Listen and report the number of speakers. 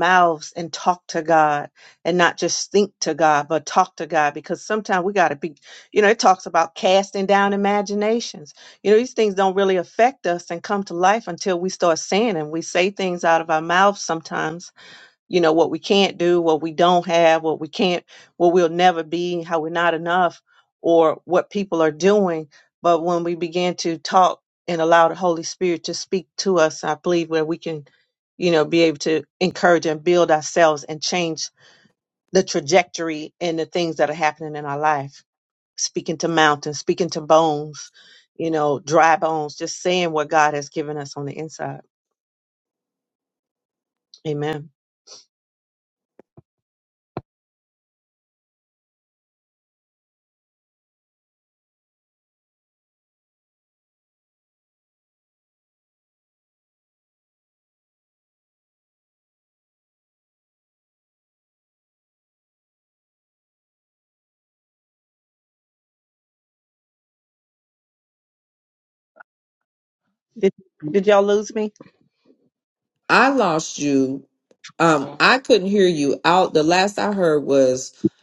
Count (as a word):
two